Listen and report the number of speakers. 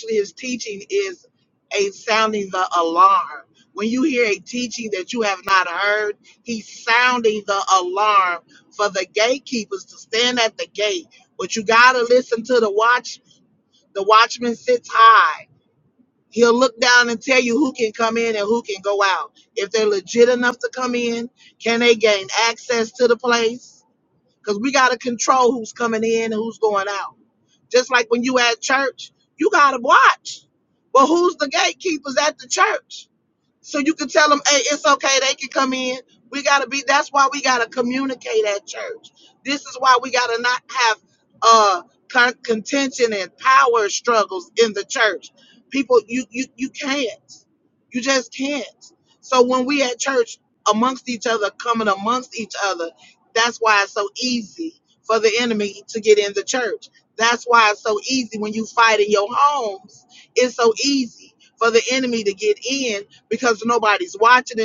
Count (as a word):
one